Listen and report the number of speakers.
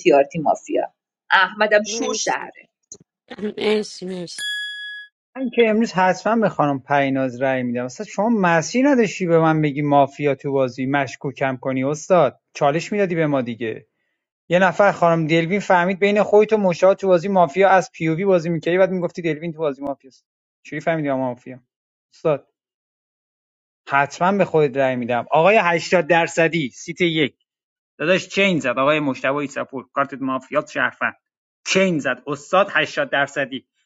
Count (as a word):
three